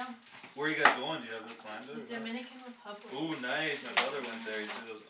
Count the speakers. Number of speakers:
2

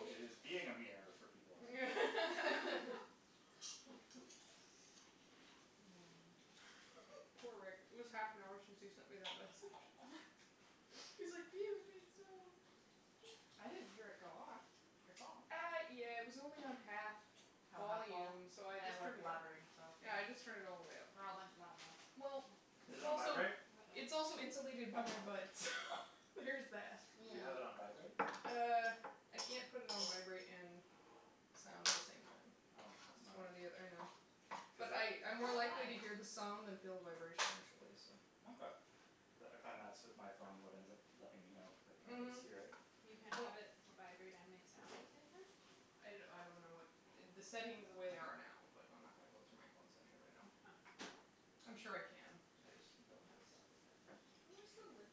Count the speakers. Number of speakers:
4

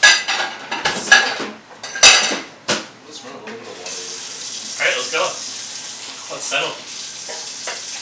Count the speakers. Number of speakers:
2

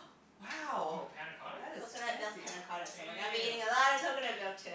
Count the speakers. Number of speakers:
3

